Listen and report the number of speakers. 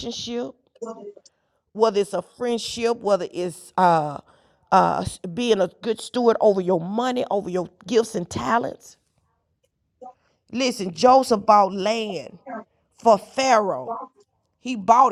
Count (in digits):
1